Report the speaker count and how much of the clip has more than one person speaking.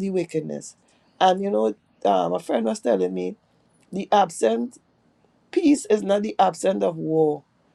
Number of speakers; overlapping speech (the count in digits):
1, no overlap